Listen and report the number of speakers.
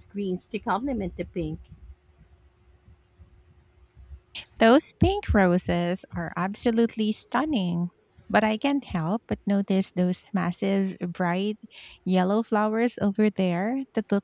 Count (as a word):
two